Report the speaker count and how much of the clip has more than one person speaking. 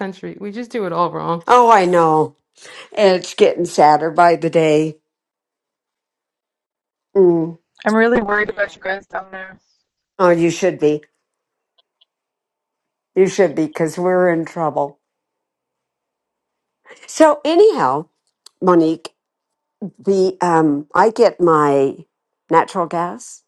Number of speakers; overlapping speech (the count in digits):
3, no overlap